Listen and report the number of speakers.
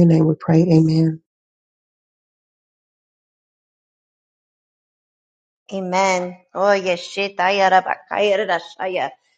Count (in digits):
2